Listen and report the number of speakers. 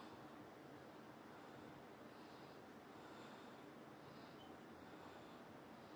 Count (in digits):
0